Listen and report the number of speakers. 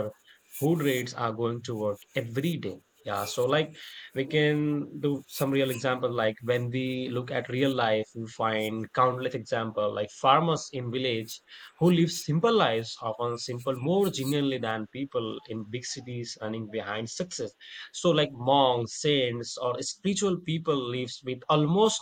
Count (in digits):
1